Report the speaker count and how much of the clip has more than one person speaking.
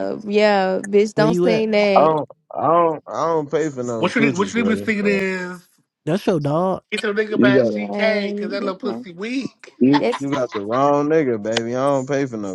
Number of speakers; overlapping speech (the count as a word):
four, about 30%